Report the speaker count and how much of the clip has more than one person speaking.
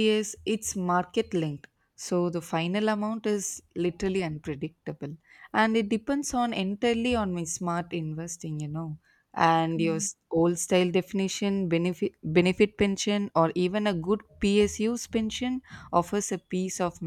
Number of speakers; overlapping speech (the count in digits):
1, no overlap